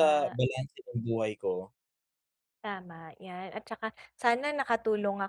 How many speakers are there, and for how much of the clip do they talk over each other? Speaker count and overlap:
2, about 7%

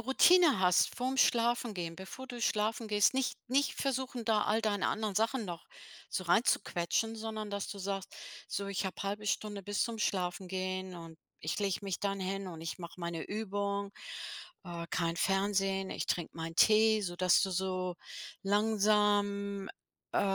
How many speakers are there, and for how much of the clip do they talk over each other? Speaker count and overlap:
1, no overlap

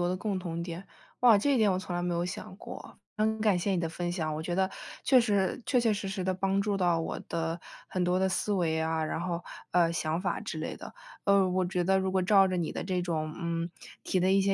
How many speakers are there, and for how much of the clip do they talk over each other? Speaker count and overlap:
1, no overlap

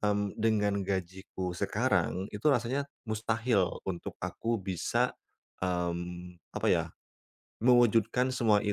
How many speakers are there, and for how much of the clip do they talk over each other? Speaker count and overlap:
1, no overlap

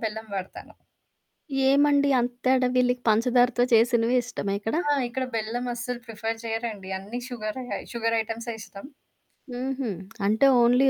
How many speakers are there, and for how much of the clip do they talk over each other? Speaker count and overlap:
2, no overlap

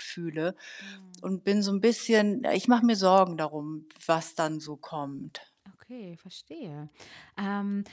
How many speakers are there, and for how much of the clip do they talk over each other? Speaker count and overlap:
2, no overlap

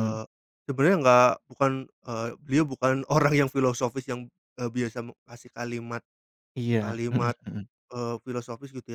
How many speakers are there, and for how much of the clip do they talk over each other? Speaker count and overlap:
2, about 8%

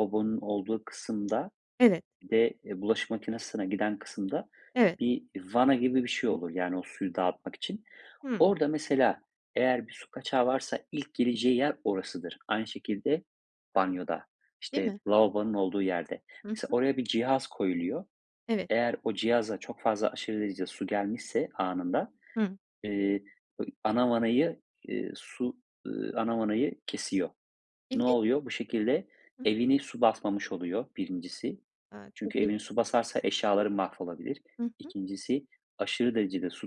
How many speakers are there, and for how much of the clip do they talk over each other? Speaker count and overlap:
2, about 3%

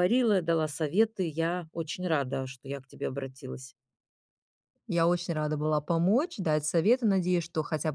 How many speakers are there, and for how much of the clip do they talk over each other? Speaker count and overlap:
2, no overlap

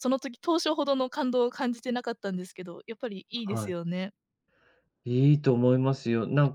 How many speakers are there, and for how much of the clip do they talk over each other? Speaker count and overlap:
2, about 5%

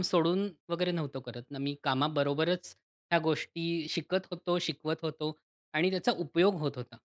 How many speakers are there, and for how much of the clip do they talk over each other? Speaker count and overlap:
1, no overlap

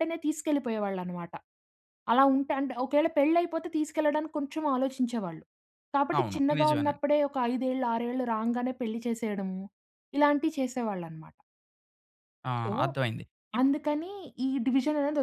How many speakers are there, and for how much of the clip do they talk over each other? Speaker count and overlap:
2, about 7%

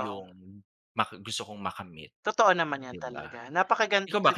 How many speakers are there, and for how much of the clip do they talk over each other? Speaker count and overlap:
2, about 21%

